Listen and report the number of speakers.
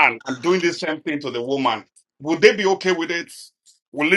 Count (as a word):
one